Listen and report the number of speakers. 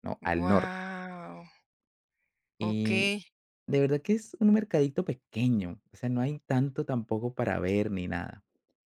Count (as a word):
two